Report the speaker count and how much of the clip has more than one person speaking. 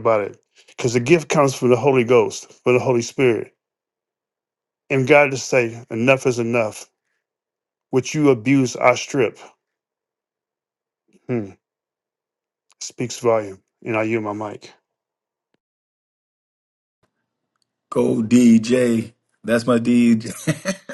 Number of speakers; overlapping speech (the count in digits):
2, no overlap